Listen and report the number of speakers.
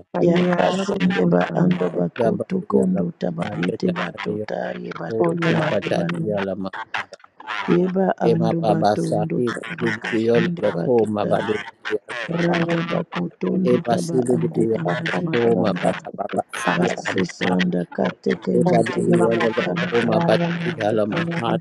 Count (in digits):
3